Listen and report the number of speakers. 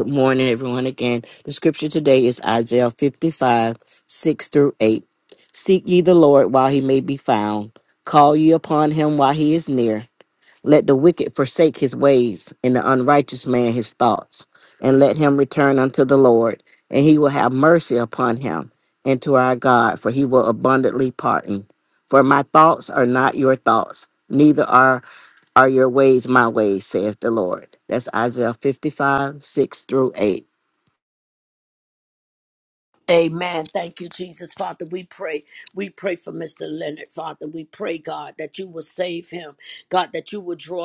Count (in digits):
2